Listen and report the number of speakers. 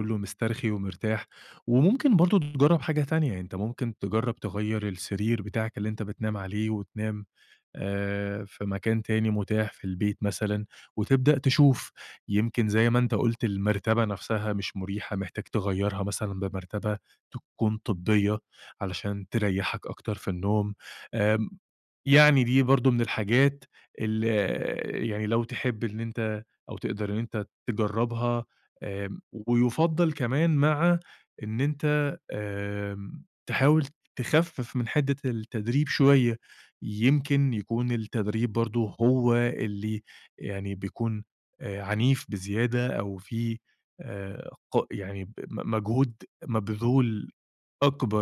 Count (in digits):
1